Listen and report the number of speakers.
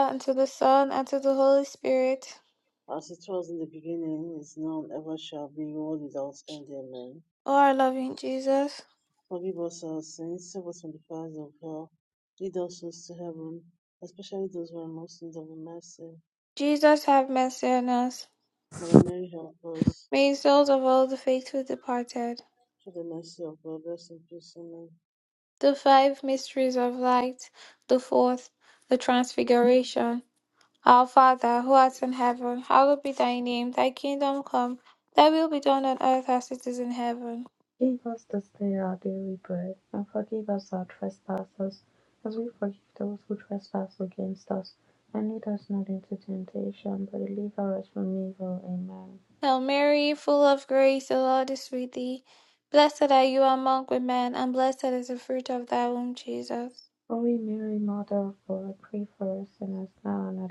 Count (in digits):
3